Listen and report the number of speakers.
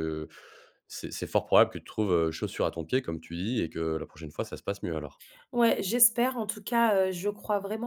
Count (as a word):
two